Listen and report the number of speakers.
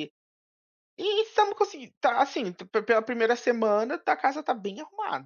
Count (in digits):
1